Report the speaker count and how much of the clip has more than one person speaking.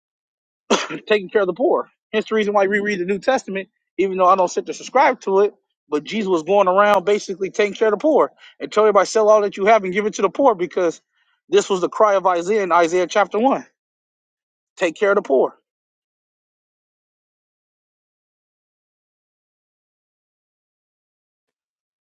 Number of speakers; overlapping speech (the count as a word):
one, no overlap